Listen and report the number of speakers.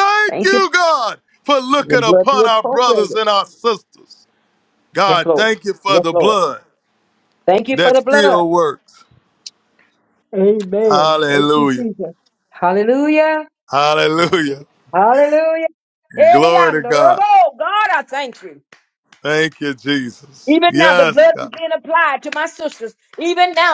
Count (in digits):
2